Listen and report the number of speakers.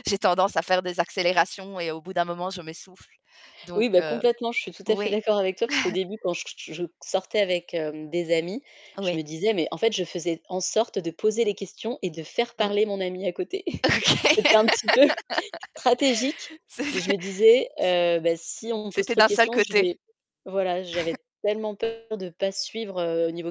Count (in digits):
2